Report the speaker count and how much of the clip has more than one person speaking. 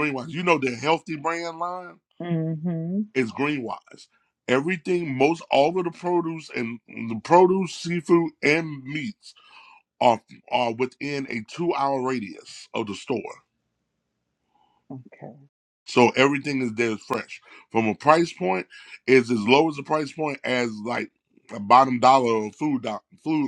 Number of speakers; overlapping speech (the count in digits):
2, no overlap